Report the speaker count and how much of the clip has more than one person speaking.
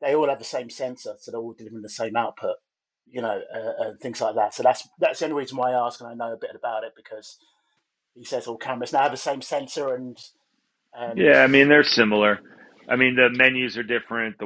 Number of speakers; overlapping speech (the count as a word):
two, about 2%